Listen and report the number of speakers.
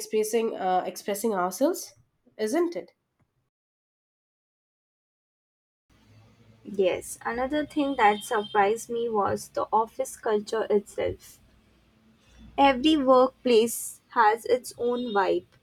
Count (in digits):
2